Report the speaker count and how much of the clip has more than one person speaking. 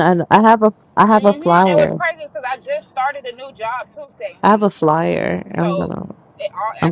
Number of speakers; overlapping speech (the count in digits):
2, about 25%